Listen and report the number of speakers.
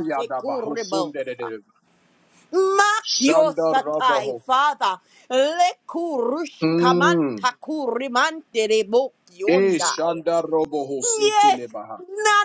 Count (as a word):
two